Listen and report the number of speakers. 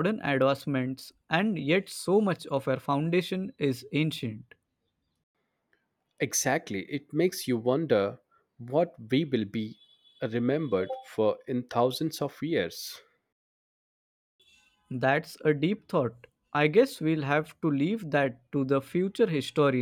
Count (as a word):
two